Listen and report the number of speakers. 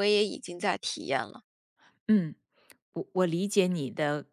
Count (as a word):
two